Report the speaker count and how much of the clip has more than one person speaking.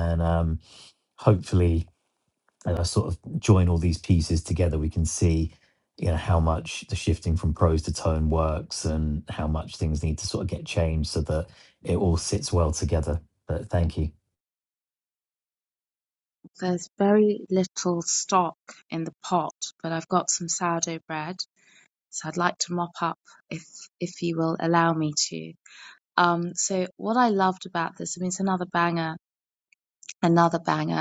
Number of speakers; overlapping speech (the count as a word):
two, no overlap